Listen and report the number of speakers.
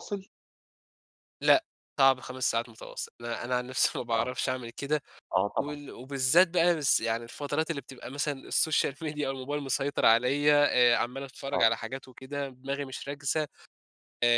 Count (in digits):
2